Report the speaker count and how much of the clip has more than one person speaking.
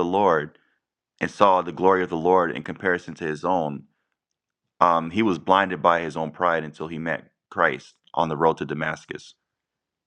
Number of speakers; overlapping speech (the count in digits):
1, no overlap